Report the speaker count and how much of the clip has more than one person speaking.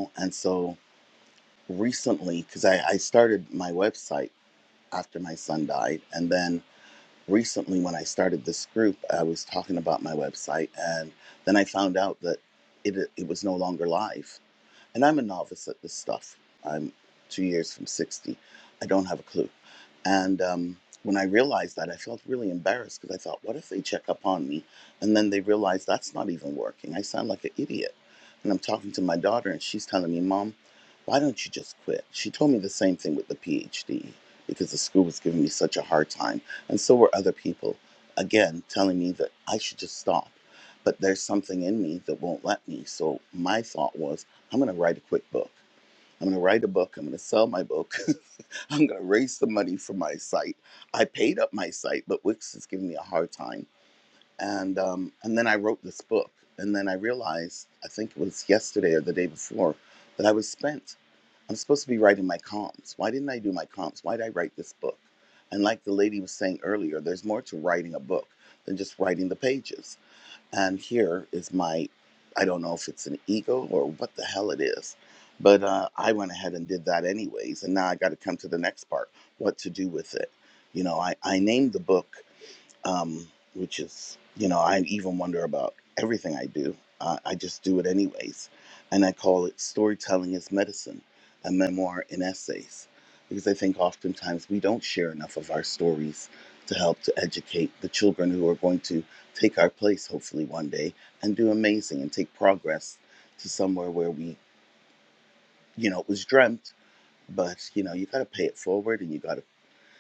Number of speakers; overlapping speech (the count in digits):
1, no overlap